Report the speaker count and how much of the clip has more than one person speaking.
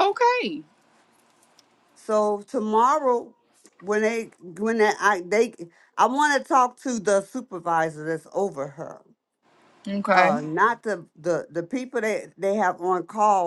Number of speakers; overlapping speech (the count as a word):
two, about 2%